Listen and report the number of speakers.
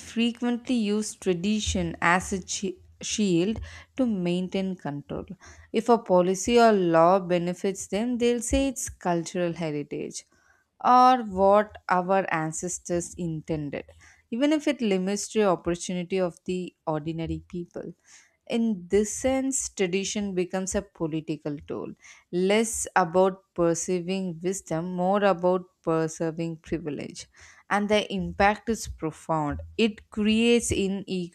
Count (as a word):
one